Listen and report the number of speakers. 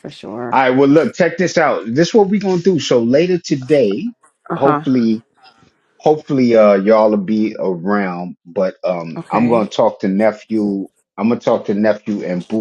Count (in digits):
2